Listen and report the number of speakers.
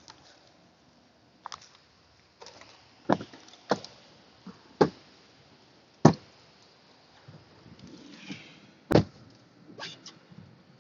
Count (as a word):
zero